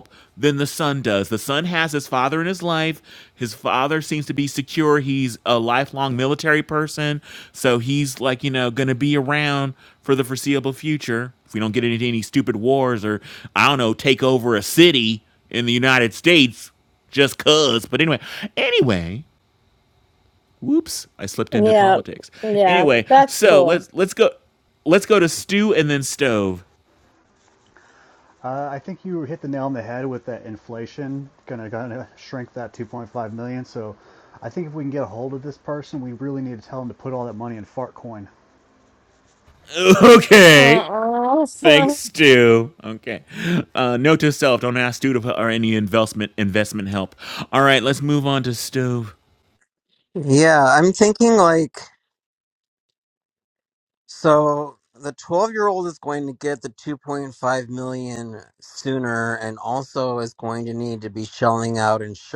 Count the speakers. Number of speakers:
four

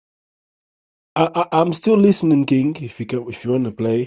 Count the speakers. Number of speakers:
one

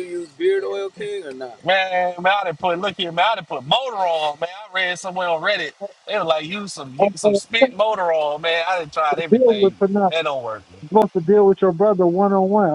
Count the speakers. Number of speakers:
three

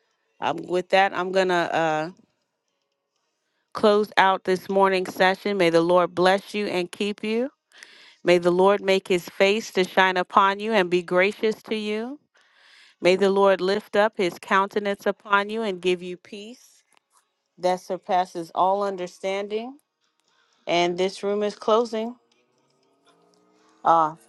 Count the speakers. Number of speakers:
one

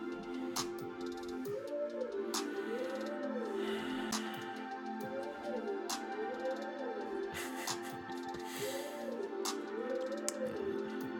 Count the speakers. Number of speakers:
zero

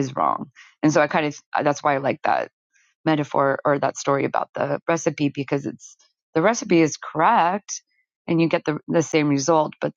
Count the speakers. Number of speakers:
one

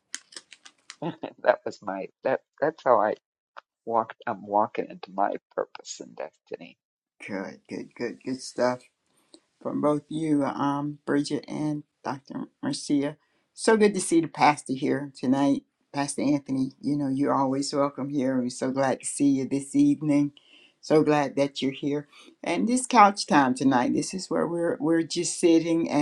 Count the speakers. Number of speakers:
two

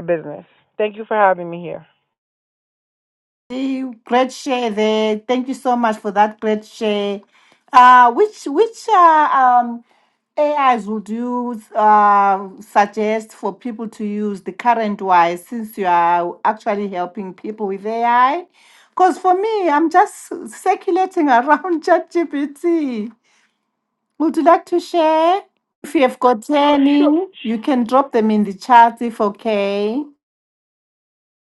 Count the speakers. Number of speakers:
two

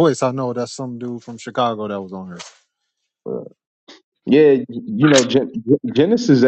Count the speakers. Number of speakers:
two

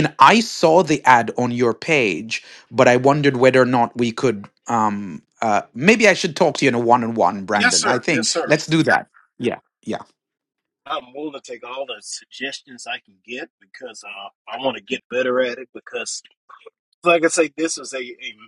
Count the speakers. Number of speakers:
two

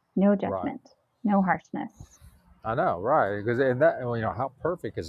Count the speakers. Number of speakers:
two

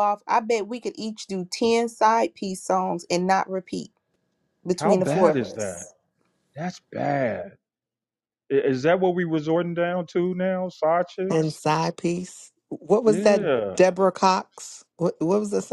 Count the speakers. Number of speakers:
three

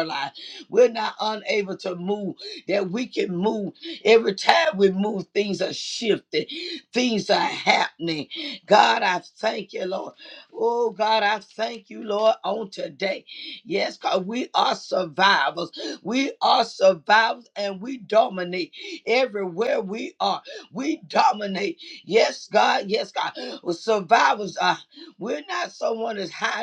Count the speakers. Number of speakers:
one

